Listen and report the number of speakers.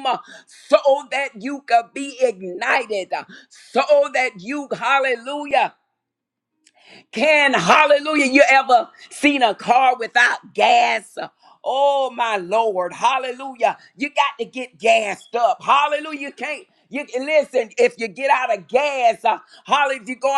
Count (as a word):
one